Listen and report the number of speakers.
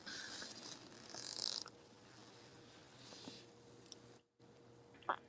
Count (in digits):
0